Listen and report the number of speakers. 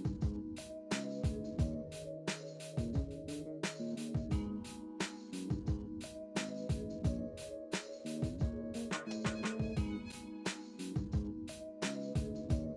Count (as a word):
zero